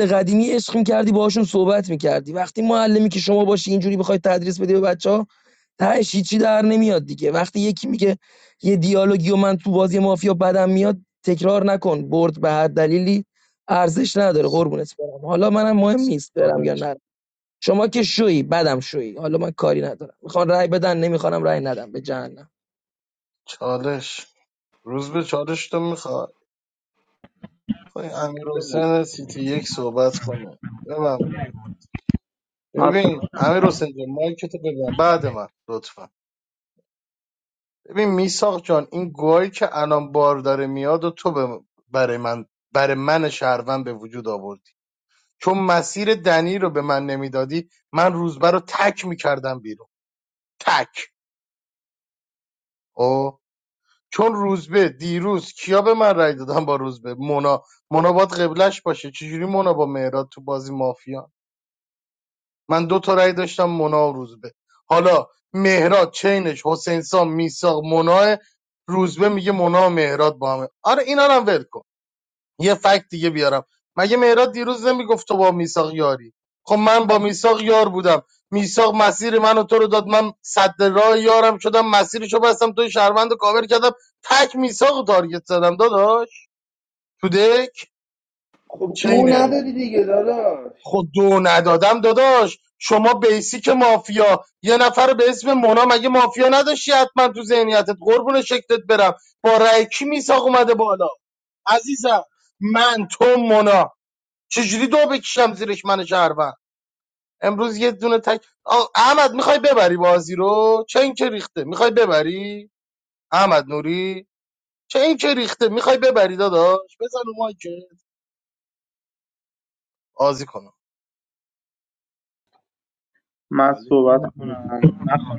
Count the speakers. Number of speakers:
4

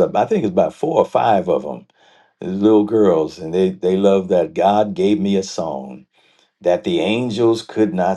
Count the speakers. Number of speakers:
1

